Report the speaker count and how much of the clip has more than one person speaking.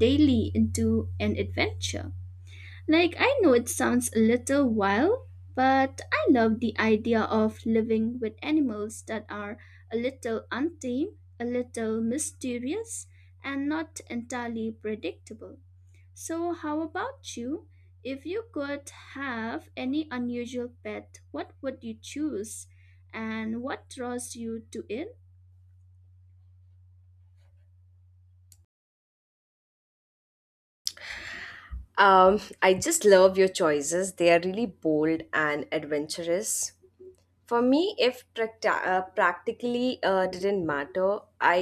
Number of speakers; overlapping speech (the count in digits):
2, no overlap